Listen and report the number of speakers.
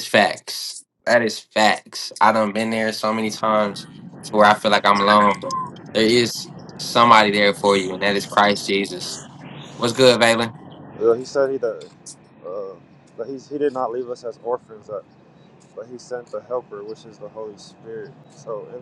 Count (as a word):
two